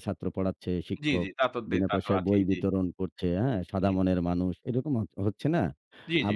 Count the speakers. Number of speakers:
2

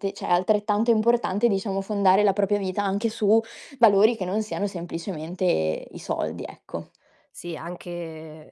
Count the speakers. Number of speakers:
2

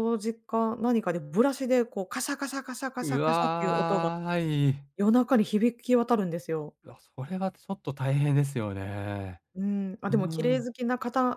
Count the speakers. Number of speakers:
2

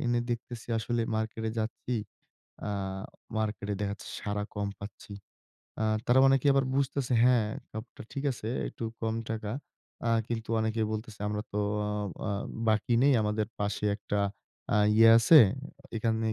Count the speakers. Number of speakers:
1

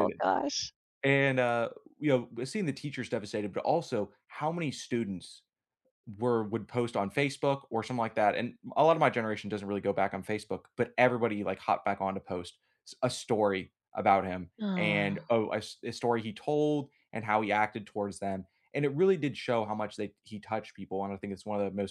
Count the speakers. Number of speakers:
2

